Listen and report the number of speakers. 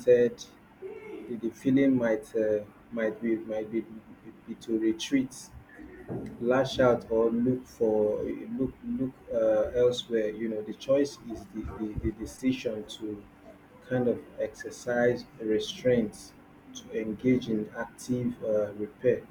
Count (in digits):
1